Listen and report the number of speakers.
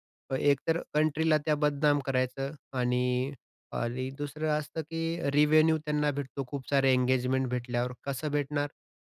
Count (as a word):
one